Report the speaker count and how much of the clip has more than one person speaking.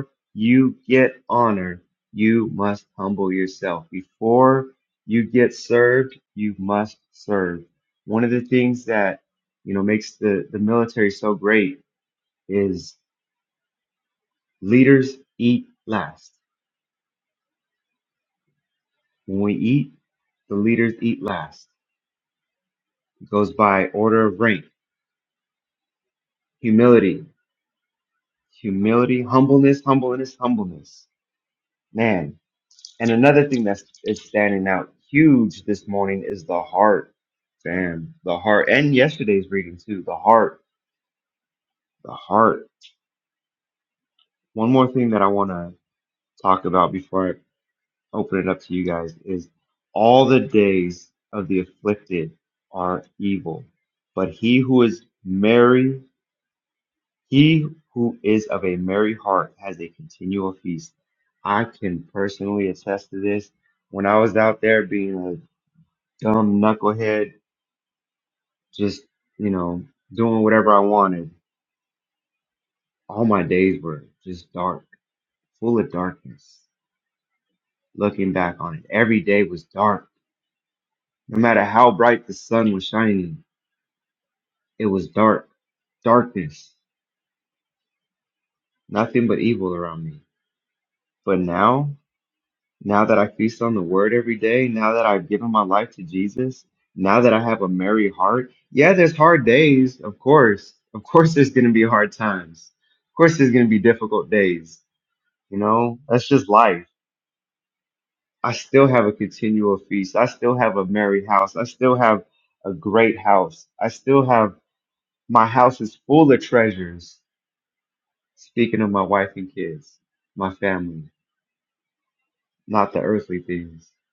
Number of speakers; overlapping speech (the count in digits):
1, no overlap